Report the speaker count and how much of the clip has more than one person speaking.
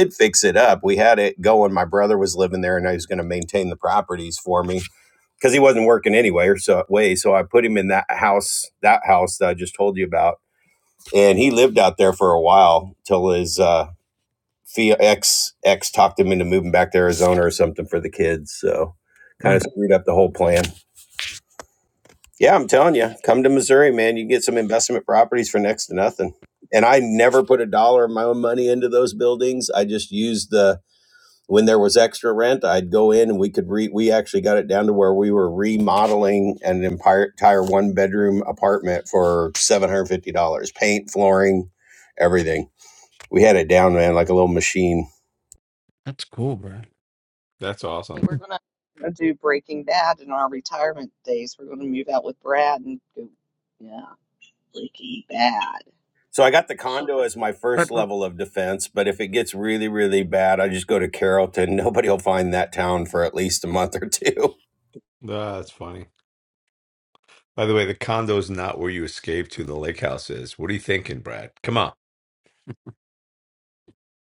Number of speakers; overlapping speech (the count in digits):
4, about 1%